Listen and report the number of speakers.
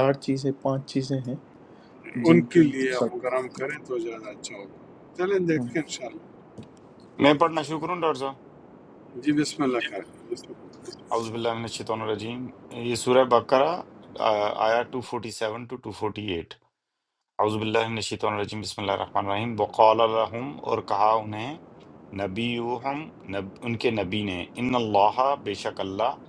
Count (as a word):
three